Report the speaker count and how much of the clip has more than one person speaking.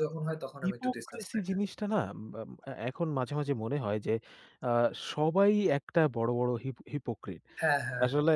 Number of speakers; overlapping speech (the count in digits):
2, about 13%